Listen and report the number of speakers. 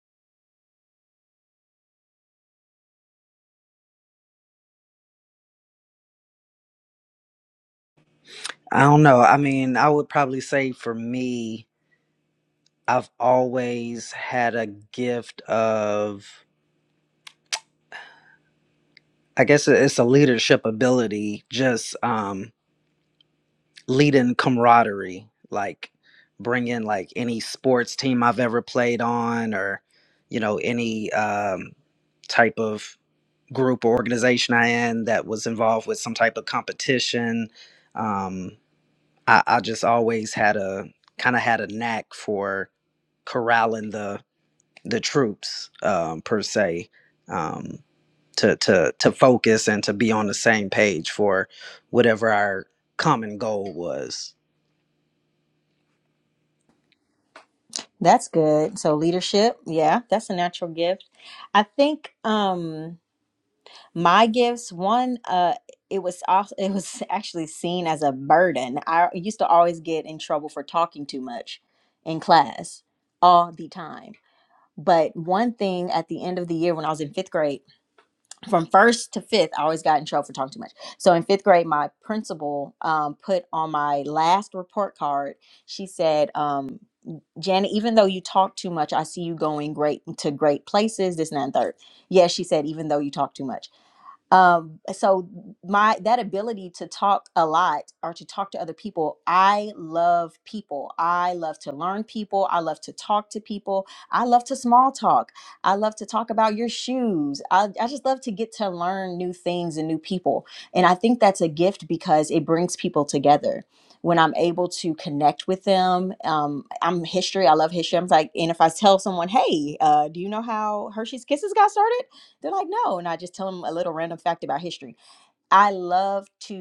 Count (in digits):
2